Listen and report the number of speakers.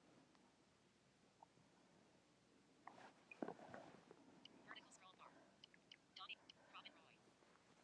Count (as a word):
zero